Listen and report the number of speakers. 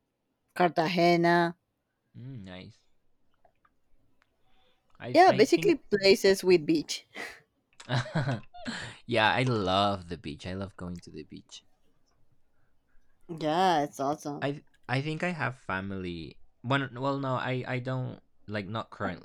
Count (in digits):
2